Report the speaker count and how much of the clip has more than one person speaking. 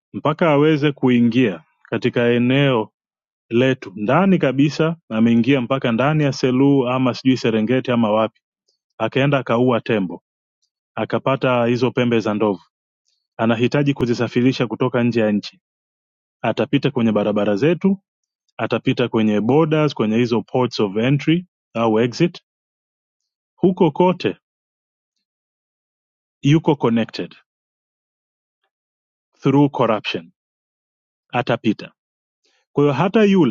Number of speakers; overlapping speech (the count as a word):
one, no overlap